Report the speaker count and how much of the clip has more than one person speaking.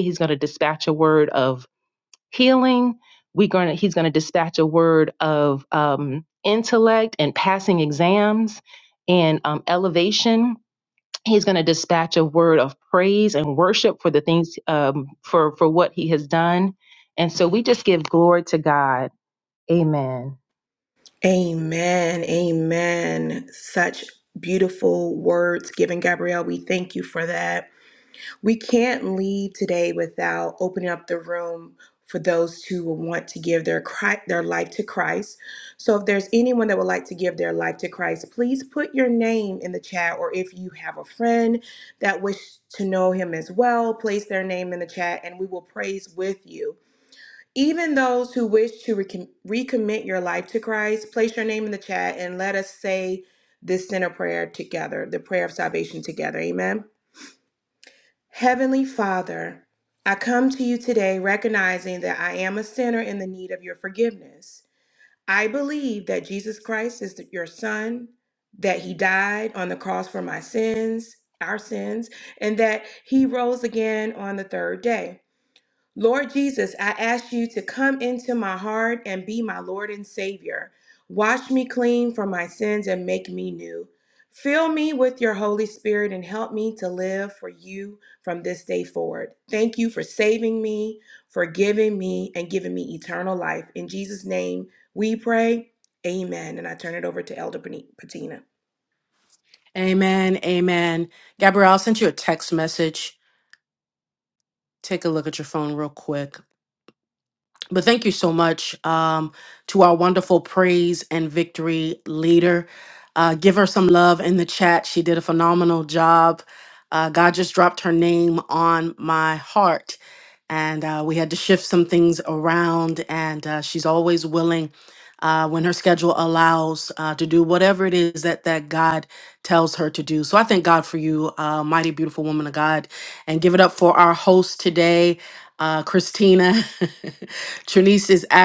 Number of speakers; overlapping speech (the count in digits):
3, no overlap